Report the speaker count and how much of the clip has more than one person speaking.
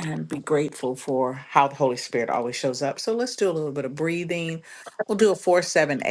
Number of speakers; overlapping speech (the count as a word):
one, no overlap